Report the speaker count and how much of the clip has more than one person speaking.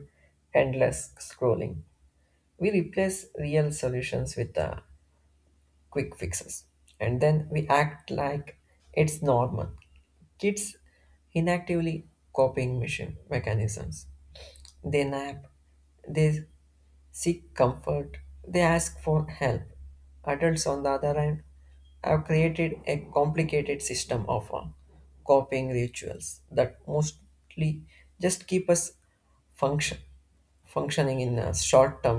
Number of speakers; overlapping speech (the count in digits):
1, no overlap